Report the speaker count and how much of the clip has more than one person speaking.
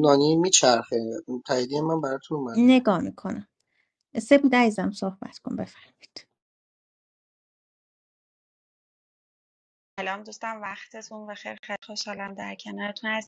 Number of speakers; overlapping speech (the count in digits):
3, under 1%